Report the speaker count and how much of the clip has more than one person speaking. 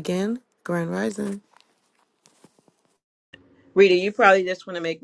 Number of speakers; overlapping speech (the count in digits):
2, no overlap